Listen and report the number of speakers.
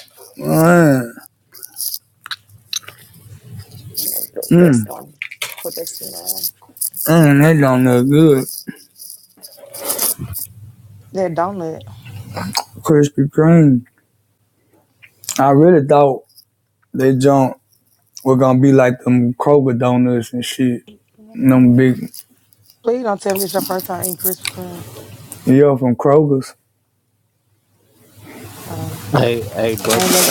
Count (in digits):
4